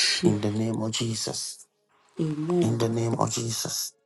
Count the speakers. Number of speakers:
2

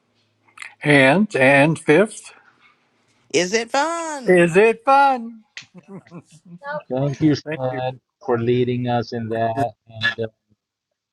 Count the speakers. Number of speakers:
3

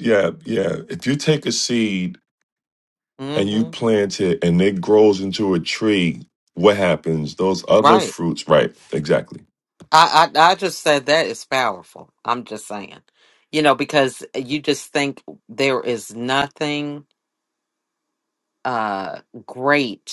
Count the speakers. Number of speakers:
2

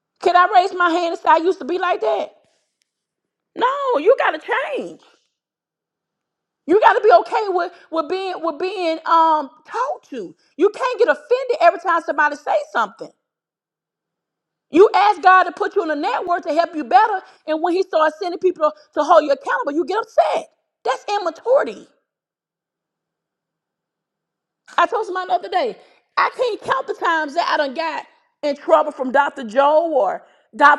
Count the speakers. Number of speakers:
1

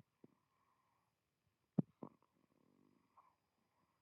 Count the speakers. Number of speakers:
0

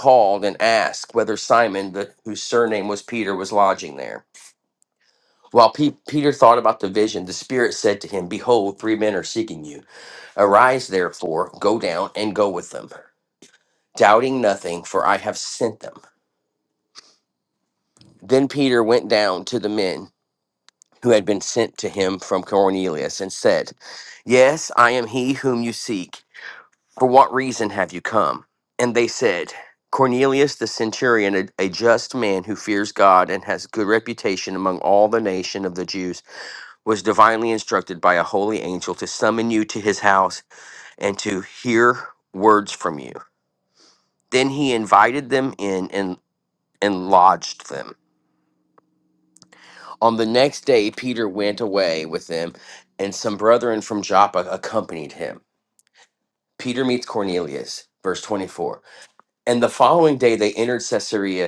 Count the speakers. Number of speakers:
1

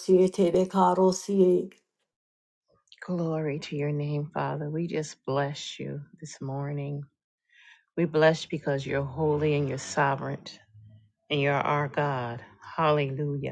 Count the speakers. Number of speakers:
2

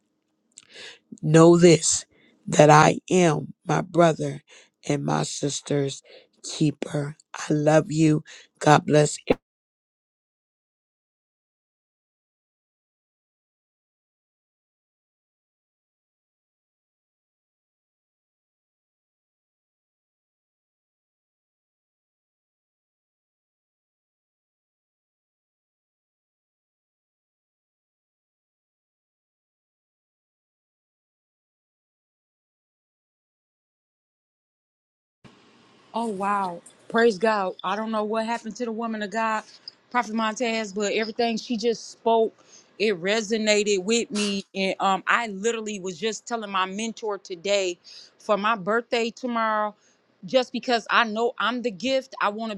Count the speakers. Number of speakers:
2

